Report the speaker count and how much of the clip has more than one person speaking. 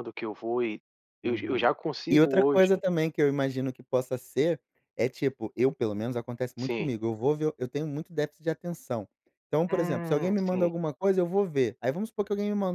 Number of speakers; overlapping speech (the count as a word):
two, about 18%